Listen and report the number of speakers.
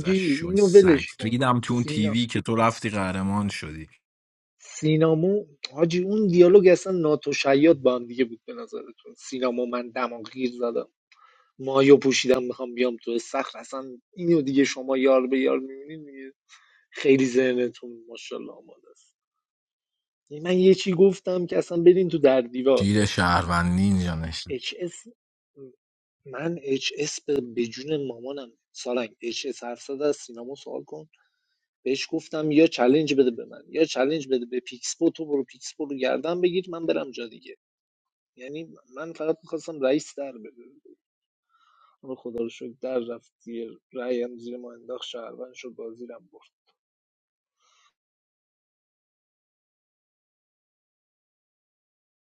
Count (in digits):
2